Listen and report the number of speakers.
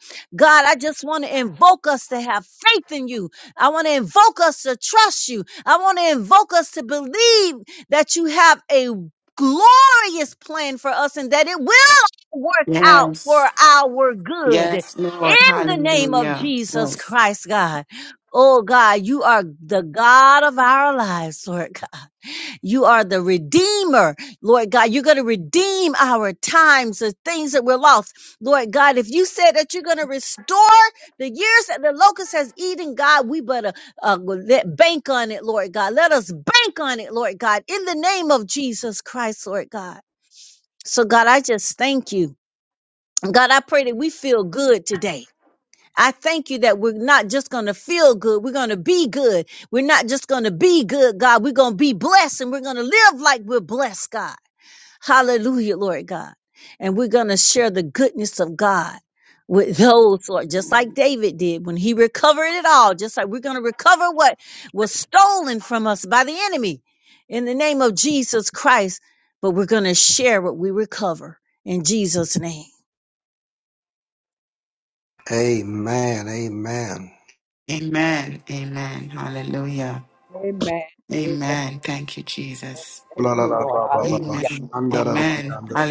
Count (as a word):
four